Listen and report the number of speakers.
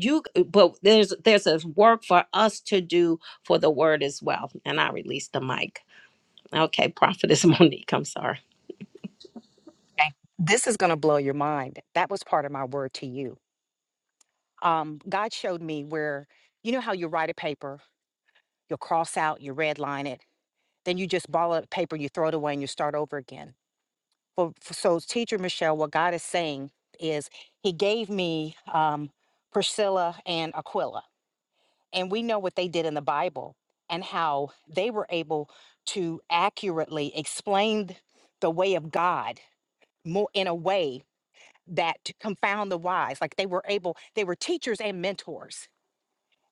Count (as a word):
two